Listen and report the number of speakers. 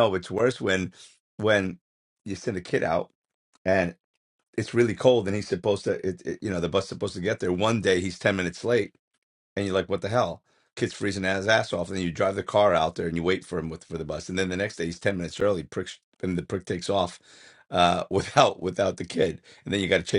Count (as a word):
one